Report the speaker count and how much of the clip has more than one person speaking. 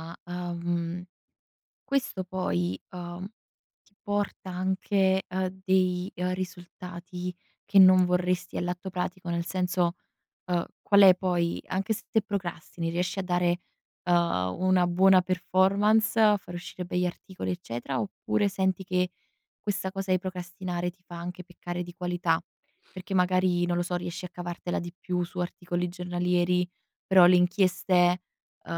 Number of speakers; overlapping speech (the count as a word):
one, no overlap